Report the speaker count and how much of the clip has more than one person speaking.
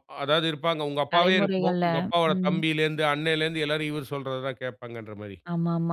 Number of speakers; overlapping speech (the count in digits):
2, about 18%